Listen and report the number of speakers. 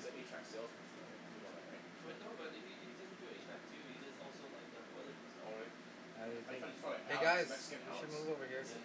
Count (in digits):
3